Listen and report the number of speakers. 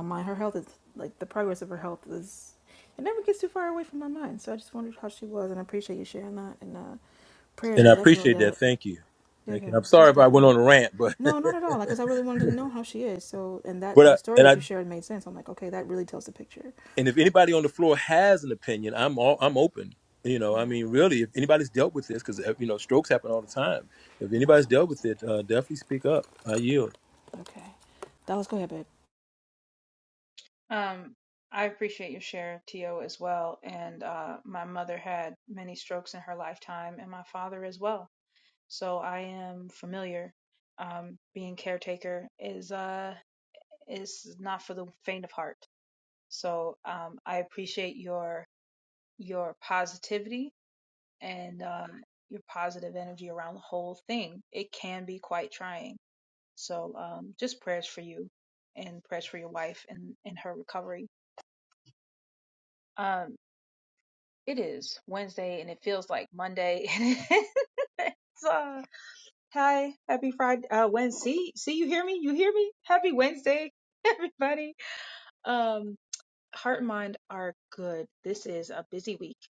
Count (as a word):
three